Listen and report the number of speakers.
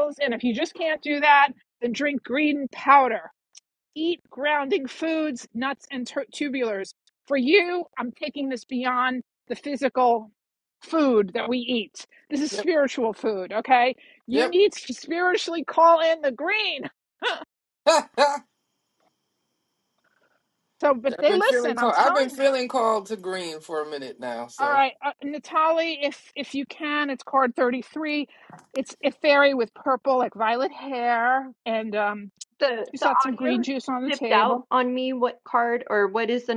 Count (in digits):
3